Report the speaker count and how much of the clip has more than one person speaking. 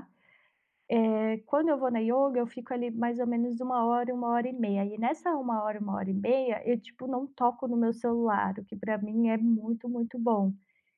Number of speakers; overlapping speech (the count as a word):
one, no overlap